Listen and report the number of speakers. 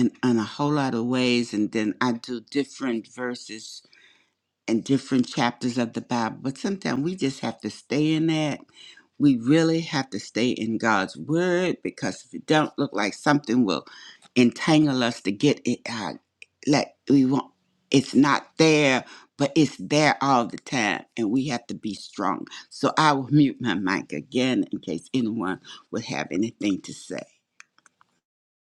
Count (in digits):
1